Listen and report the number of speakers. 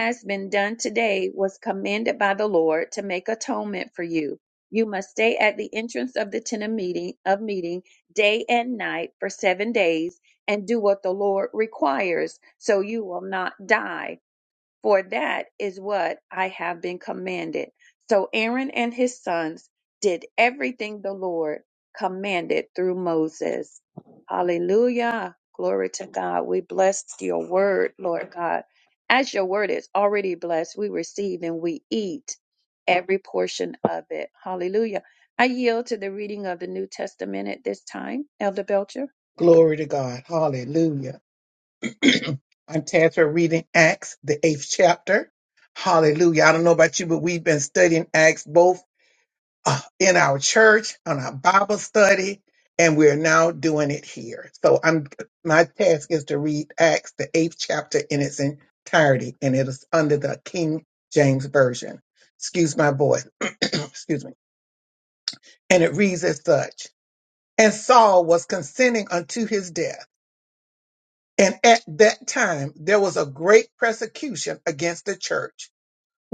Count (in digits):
2